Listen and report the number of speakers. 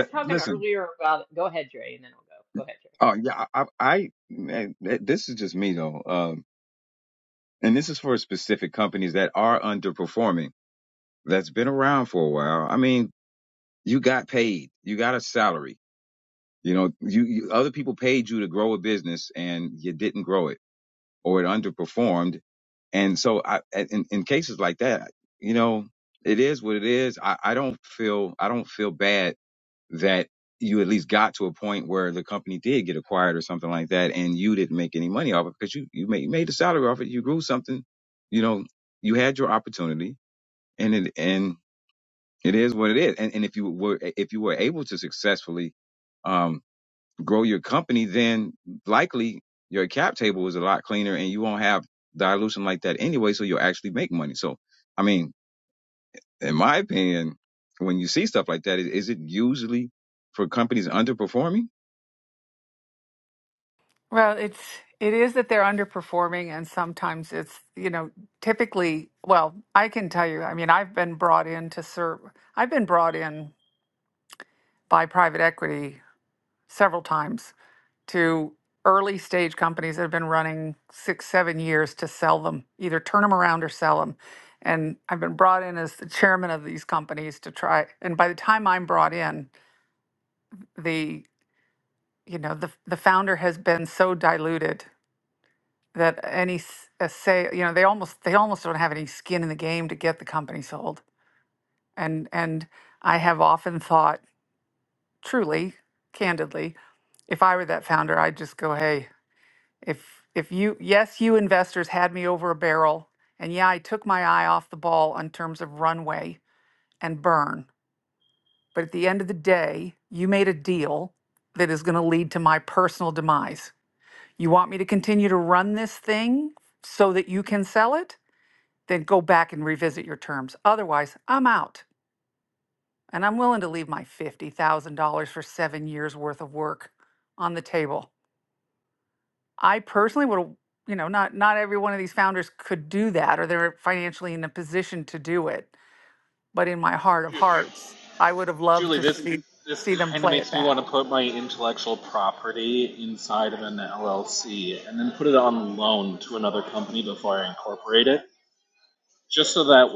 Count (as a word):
four